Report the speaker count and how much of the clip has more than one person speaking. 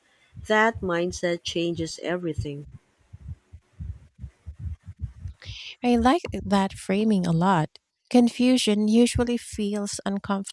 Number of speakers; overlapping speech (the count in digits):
2, no overlap